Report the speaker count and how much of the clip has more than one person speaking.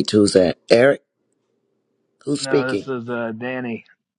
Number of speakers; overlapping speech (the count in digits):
2, about 12%